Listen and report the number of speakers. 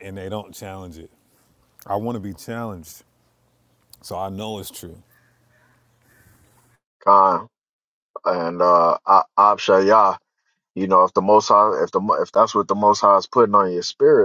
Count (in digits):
2